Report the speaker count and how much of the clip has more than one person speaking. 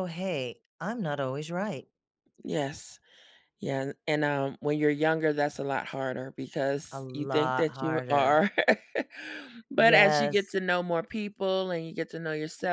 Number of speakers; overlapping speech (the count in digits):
2, about 14%